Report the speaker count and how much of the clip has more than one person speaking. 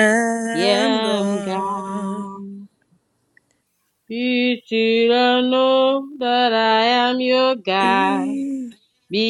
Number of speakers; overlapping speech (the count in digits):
2, about 22%